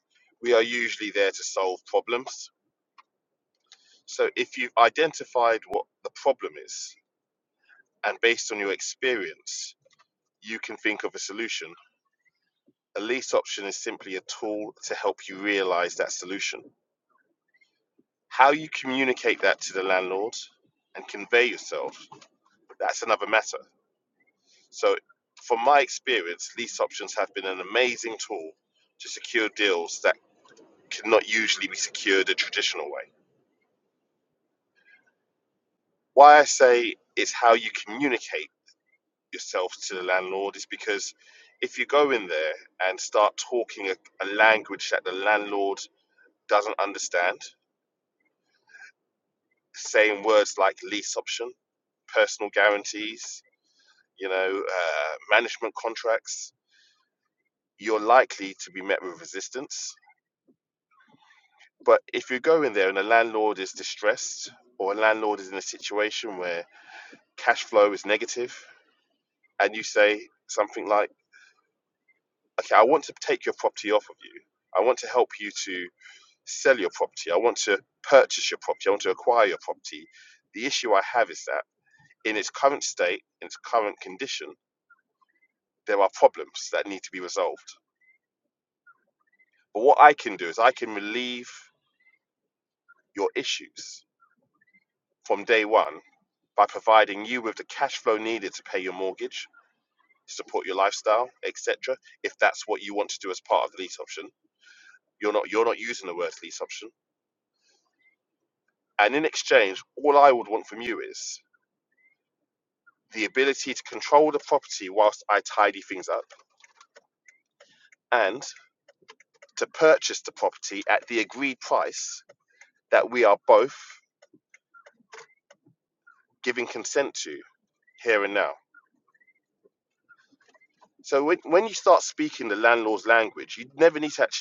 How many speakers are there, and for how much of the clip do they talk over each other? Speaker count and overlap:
1, no overlap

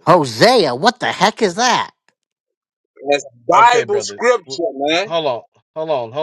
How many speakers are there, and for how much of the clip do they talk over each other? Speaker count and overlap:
3, about 17%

